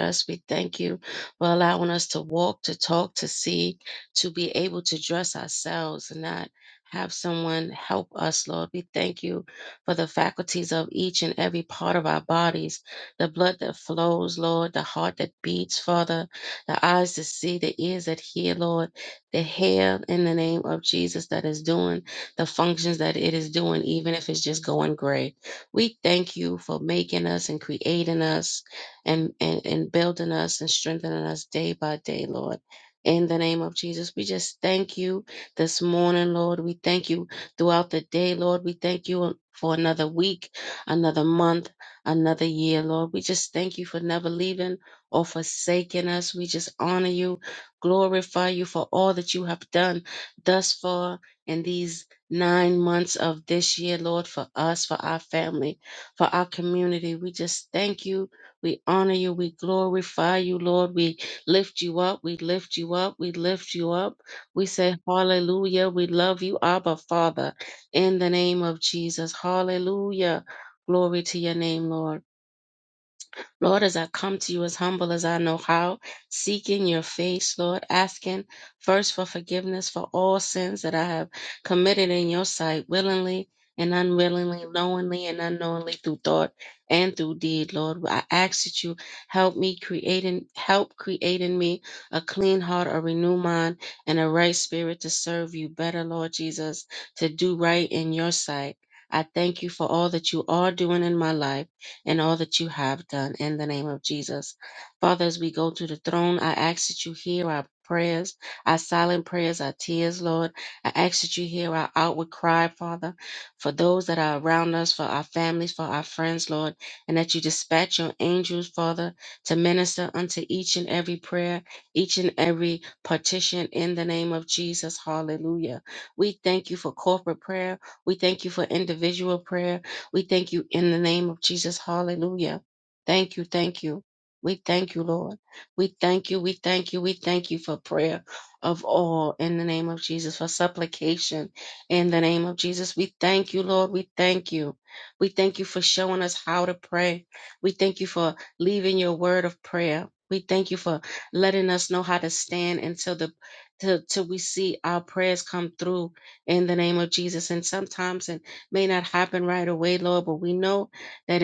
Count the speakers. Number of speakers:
1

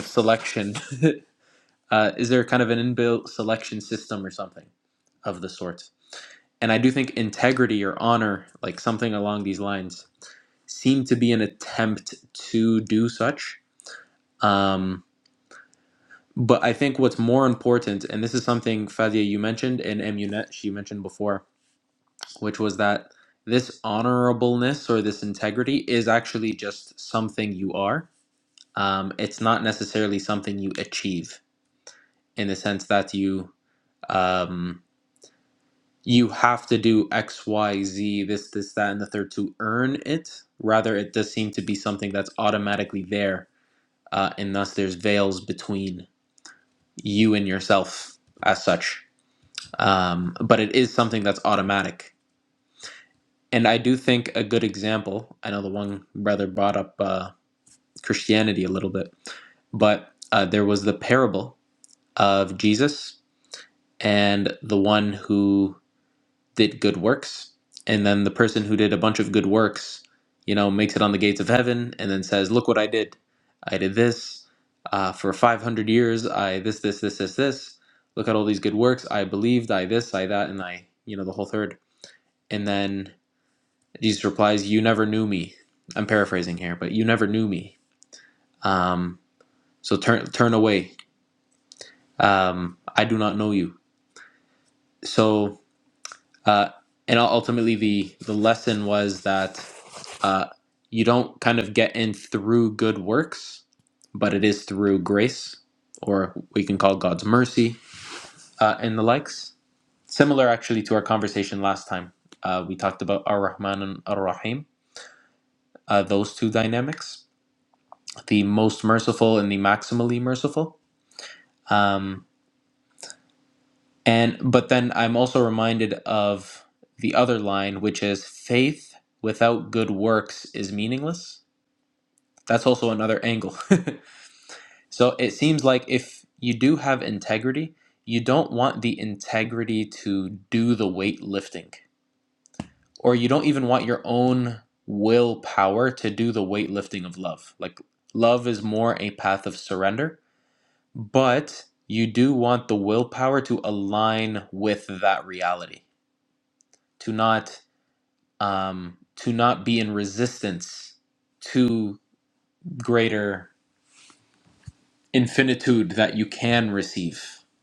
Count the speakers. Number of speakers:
1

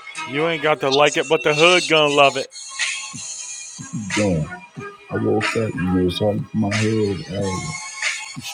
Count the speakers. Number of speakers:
2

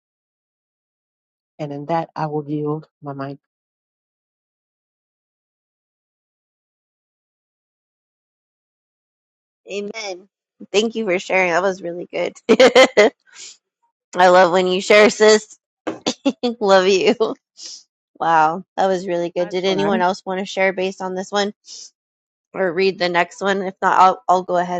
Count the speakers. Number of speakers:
2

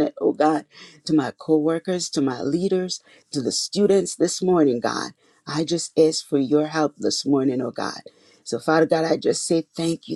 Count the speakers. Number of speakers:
1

